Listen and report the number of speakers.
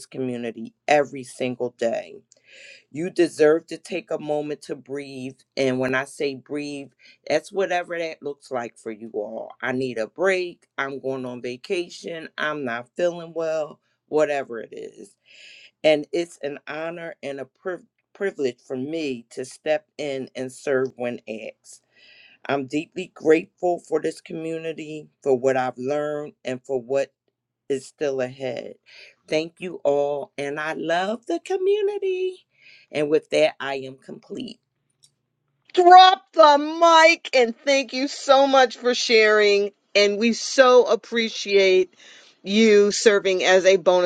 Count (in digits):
2